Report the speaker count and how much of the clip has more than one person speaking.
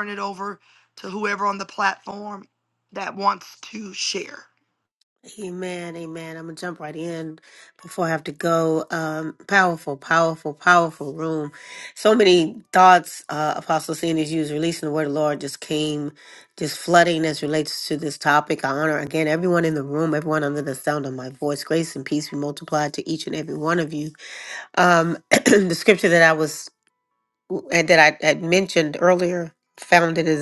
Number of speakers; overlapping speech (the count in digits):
2, no overlap